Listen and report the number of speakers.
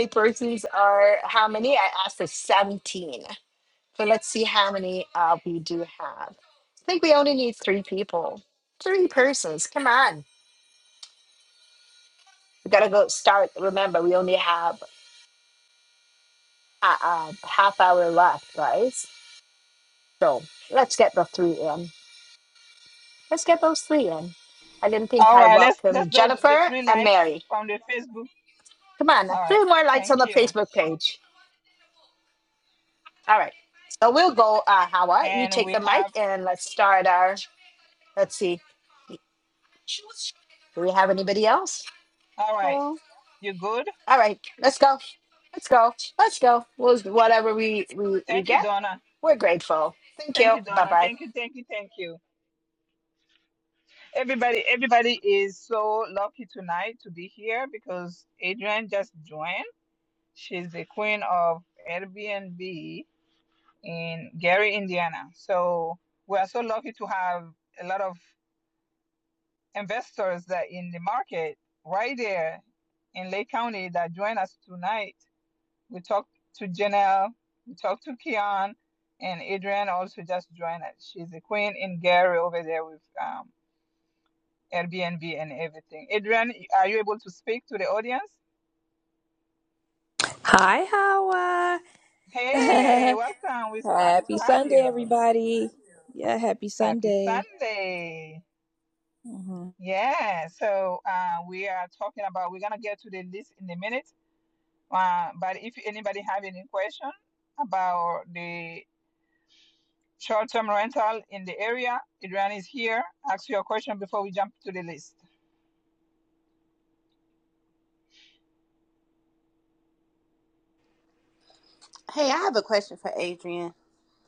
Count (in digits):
4